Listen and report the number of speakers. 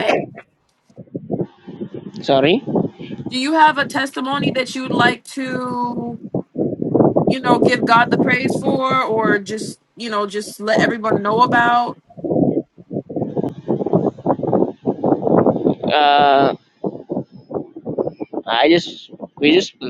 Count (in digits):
2